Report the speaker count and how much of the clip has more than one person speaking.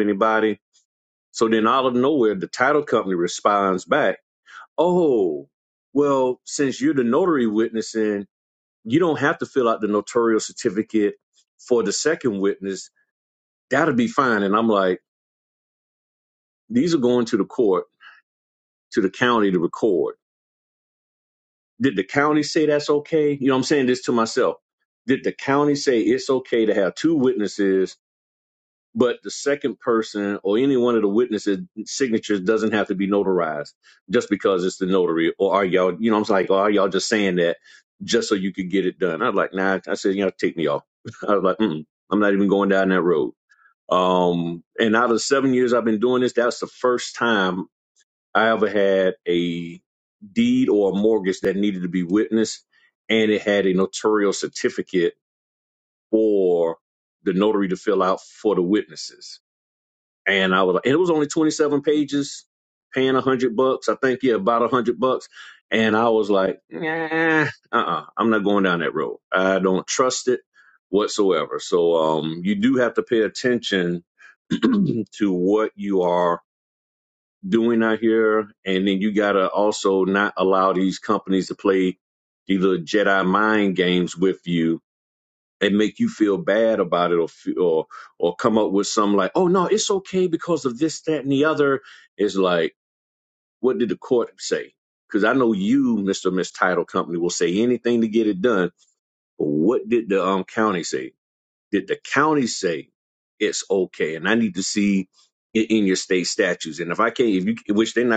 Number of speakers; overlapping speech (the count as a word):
one, no overlap